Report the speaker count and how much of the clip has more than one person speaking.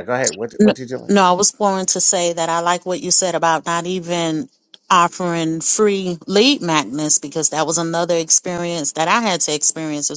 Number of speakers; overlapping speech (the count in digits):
2, about 2%